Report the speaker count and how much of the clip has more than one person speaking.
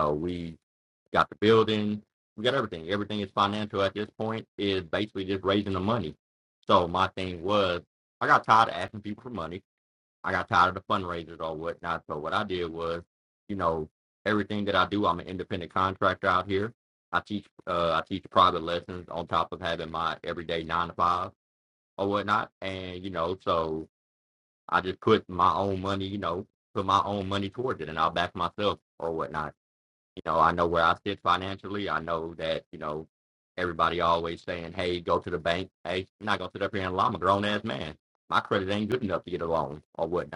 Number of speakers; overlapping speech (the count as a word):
one, no overlap